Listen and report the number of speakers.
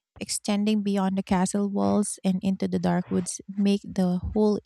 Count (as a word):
one